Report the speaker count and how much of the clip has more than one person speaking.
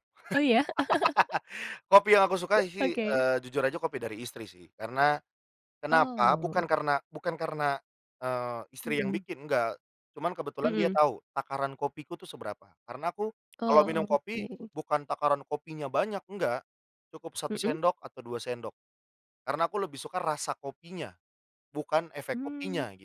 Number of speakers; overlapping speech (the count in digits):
2, about 15%